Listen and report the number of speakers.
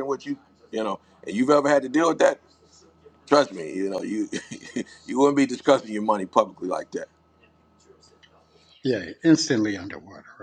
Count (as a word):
two